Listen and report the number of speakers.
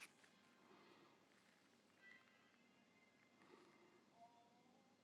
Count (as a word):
zero